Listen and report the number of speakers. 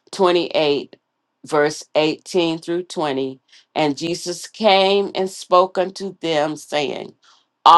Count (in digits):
1